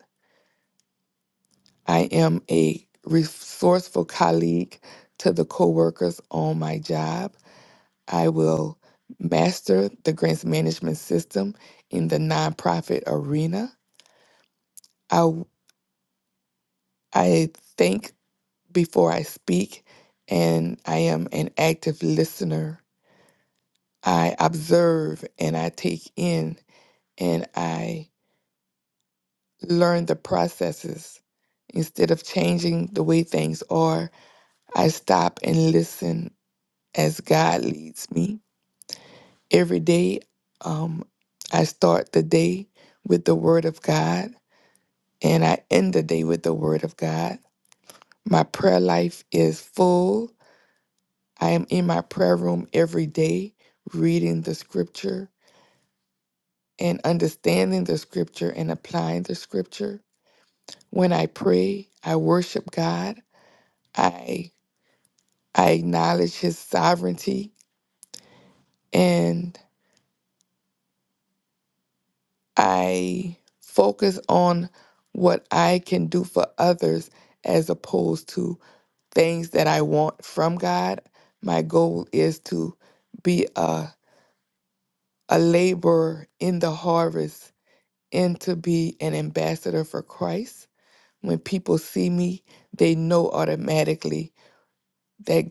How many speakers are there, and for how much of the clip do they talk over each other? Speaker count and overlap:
one, no overlap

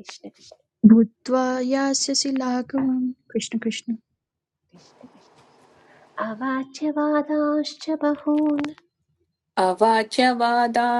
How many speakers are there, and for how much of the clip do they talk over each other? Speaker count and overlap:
three, no overlap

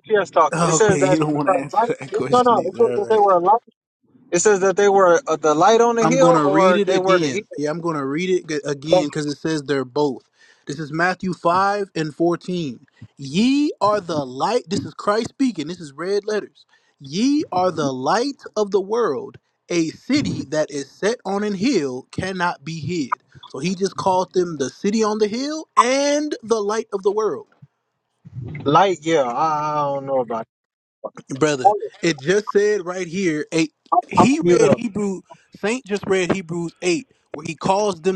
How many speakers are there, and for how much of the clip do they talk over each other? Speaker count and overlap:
two, about 13%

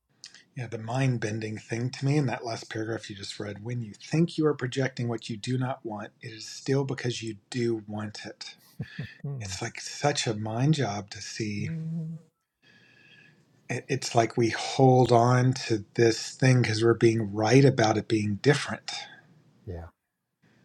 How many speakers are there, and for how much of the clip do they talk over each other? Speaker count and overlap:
two, about 1%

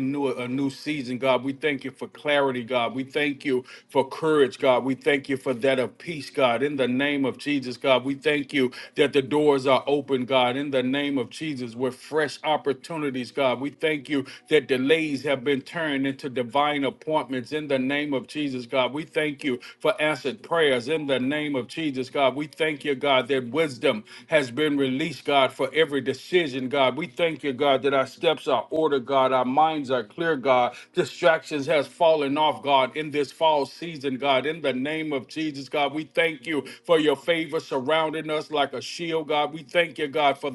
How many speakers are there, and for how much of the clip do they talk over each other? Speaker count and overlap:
one, no overlap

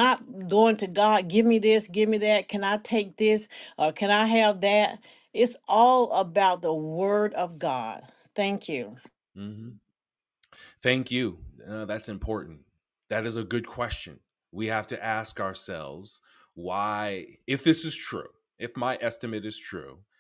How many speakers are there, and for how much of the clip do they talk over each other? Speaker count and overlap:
two, no overlap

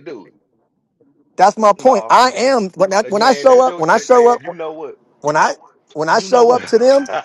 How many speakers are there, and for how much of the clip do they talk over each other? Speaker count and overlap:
two, about 32%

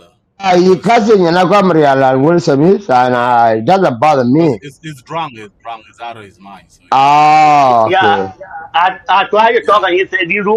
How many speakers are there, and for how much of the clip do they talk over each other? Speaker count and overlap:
three, about 25%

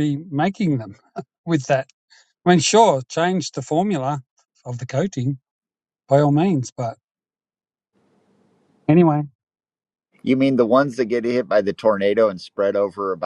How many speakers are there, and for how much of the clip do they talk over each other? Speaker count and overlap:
two, no overlap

